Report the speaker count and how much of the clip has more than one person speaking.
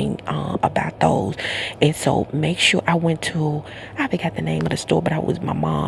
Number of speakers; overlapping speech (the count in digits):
1, no overlap